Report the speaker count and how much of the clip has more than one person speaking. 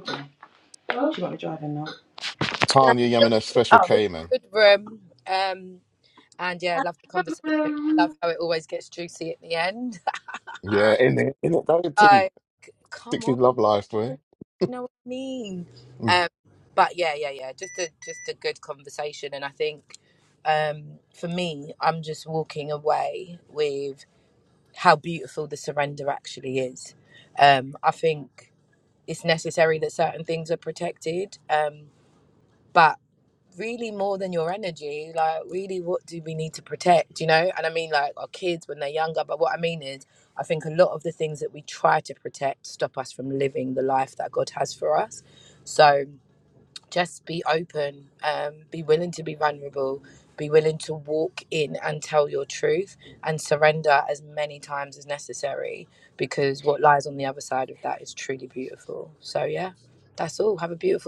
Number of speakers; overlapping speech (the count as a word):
three, about 2%